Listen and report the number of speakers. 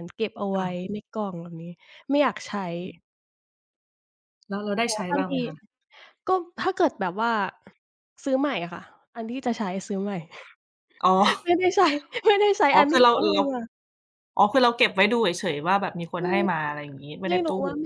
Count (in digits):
2